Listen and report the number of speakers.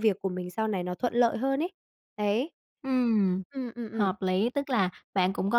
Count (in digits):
2